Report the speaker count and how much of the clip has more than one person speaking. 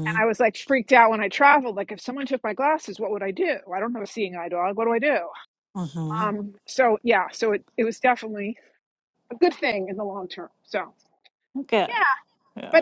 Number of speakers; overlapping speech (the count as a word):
two, about 3%